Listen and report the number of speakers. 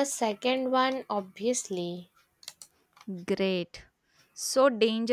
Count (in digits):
2